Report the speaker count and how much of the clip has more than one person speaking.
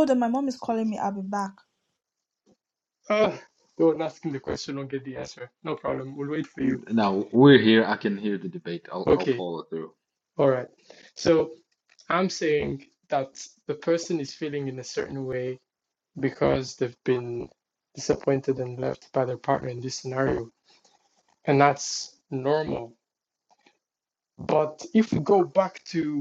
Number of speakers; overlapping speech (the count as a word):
three, about 2%